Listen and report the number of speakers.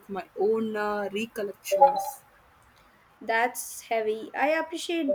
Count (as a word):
two